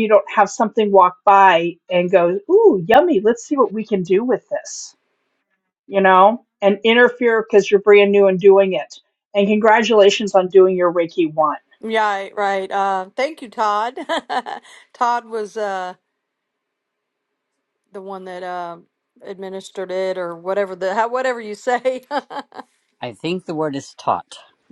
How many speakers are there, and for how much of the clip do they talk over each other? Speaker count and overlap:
three, no overlap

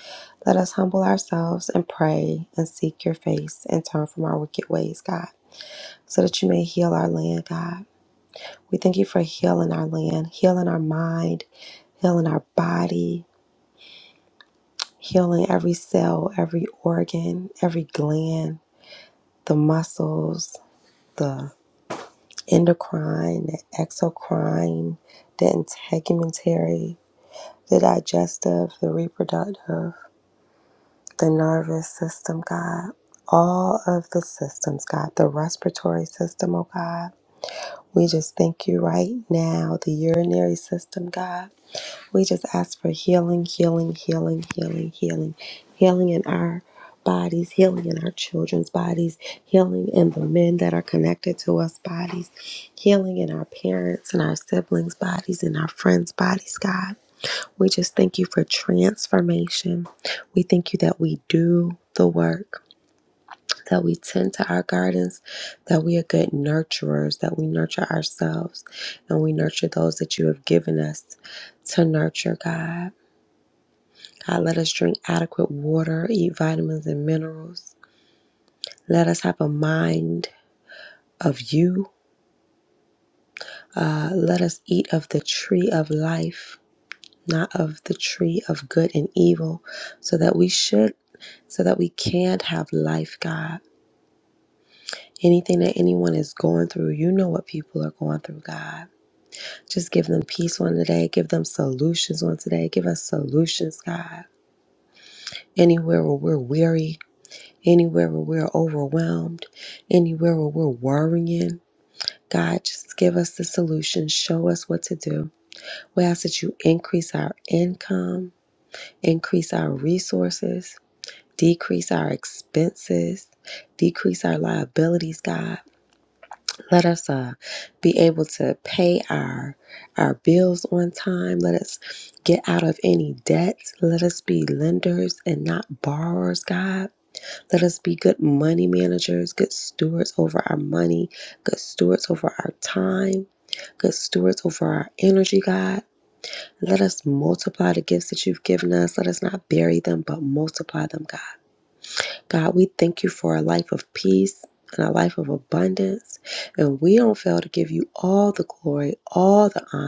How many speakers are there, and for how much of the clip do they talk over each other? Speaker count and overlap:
one, no overlap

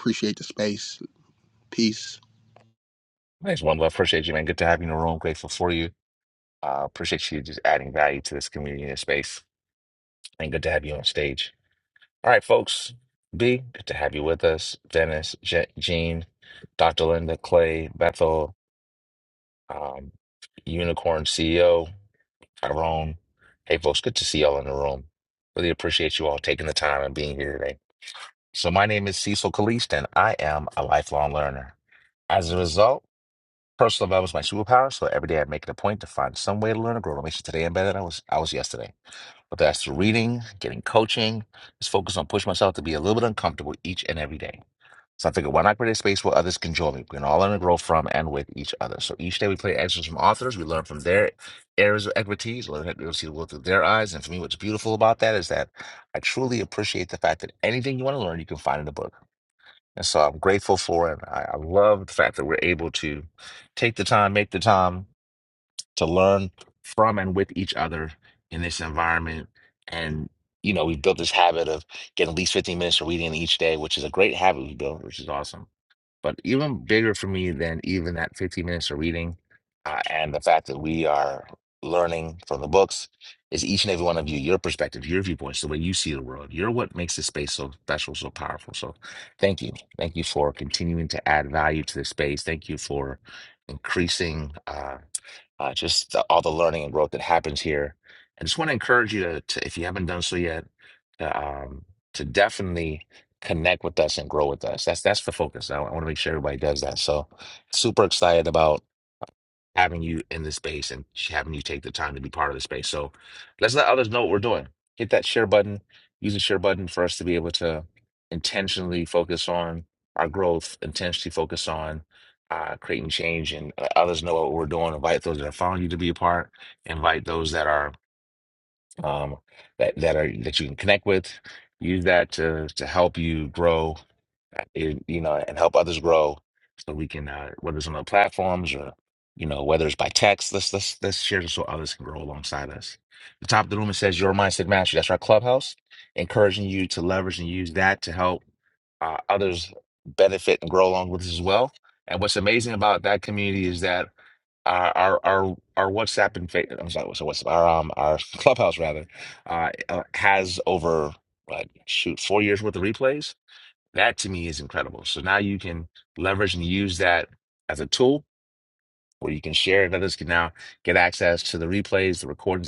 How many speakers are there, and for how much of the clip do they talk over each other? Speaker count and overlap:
two, no overlap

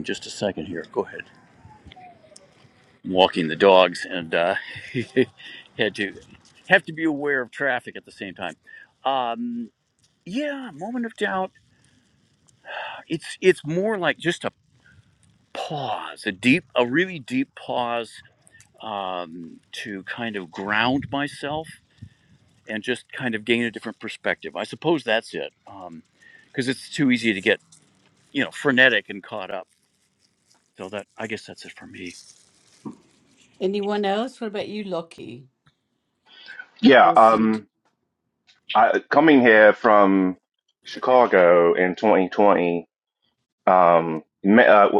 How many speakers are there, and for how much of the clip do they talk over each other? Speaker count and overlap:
three, about 1%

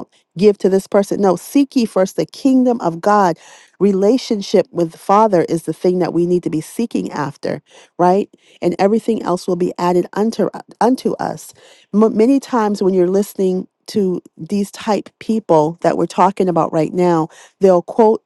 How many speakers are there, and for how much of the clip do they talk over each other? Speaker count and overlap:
one, no overlap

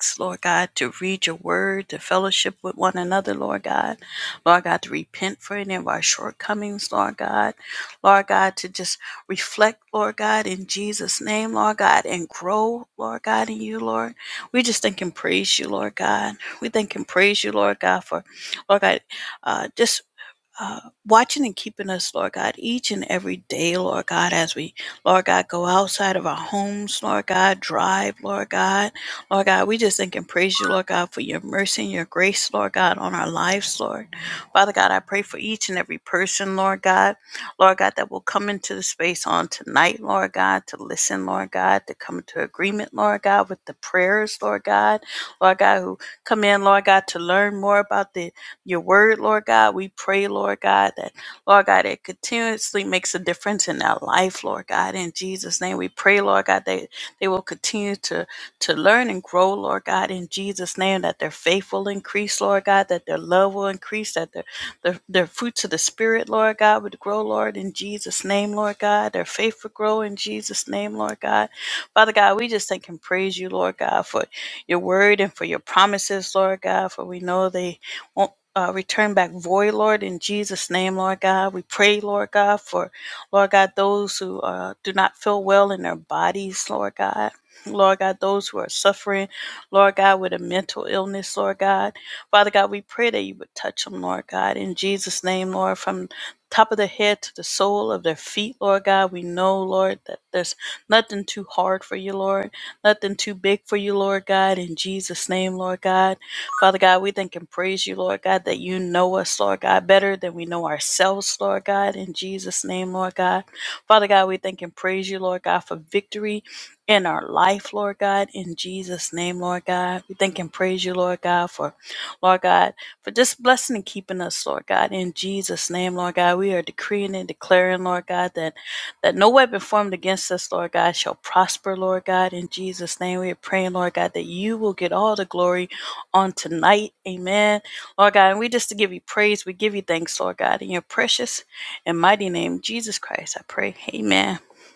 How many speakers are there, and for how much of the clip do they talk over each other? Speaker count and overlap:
one, no overlap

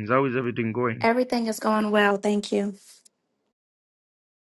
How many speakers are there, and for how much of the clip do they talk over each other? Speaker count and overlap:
two, about 1%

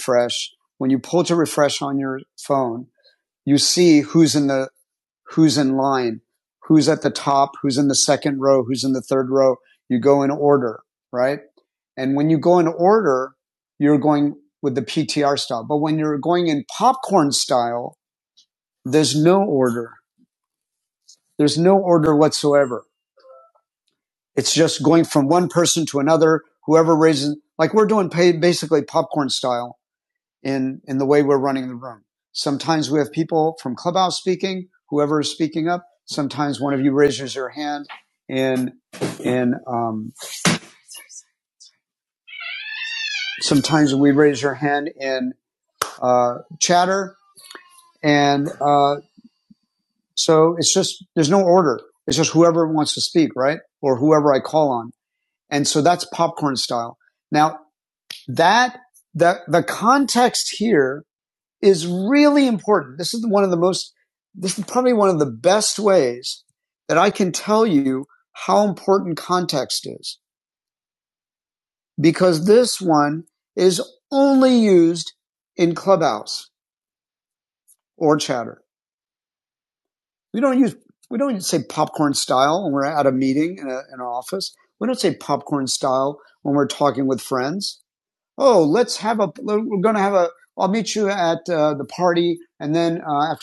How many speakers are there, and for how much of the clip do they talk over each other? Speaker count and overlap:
one, no overlap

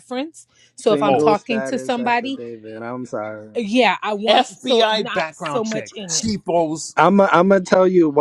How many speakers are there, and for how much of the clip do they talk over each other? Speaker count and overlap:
three, about 39%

